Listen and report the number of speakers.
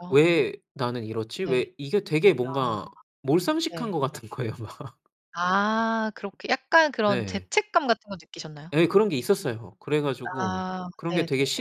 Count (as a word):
two